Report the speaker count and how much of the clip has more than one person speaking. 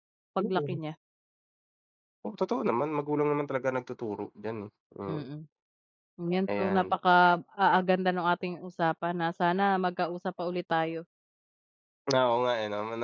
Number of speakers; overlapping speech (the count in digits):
2, about 8%